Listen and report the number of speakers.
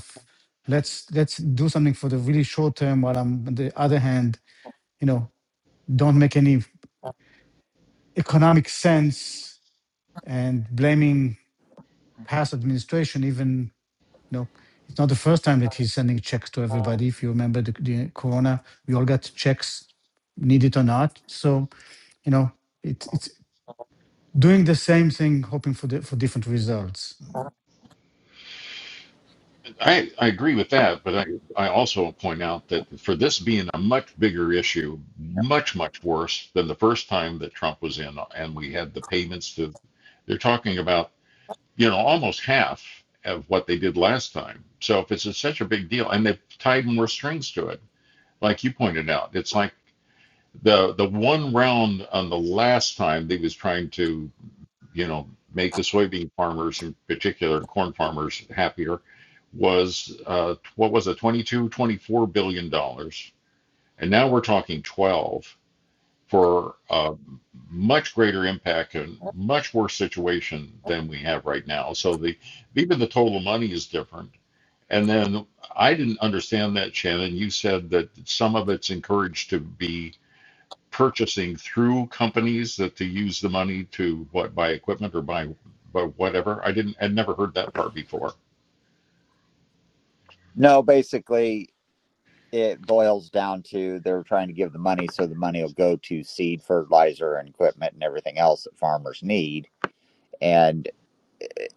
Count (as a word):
three